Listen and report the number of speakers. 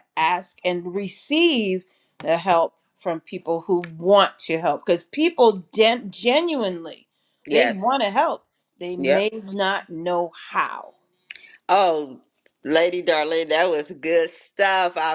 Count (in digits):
2